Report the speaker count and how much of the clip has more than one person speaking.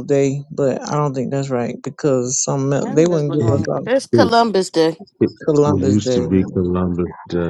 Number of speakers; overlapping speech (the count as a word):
three, about 29%